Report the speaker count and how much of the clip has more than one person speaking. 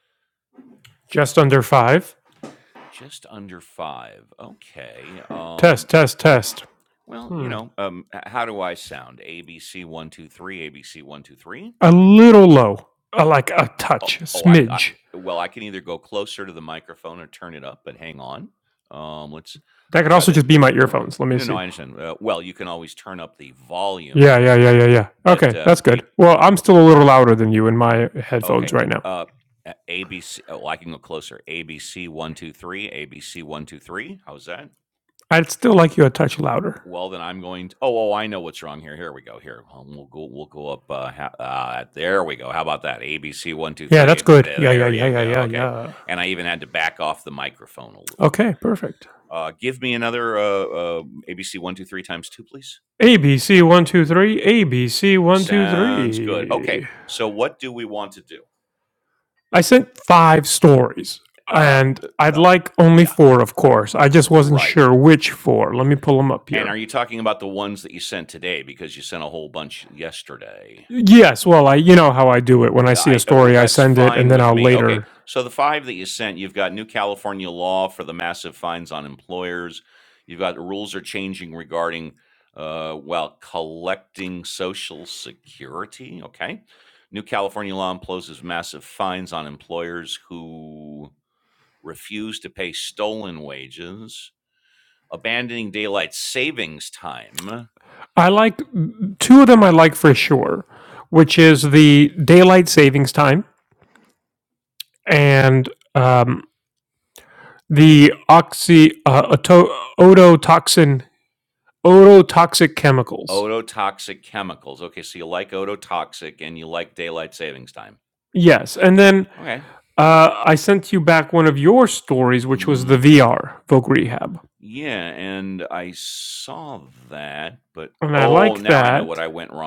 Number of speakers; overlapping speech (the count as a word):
two, about 10%